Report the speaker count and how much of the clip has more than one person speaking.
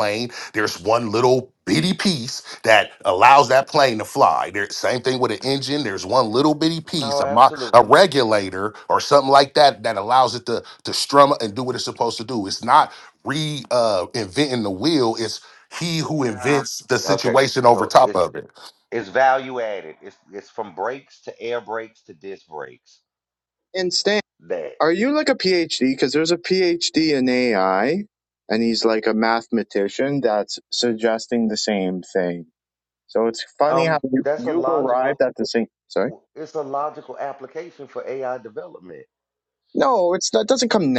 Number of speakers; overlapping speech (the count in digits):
3, about 9%